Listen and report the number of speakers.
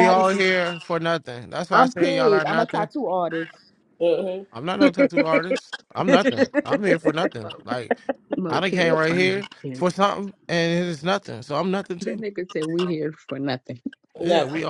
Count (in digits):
4